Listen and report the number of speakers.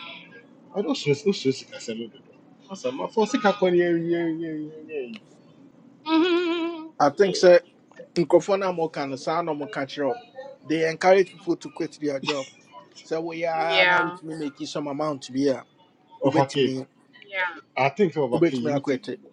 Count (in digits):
3